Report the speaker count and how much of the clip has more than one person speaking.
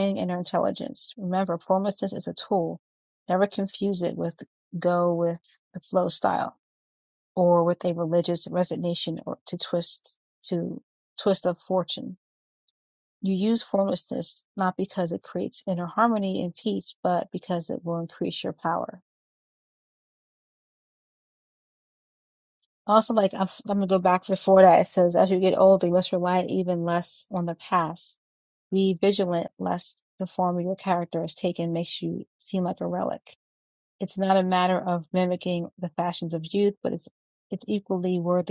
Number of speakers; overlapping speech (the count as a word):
one, no overlap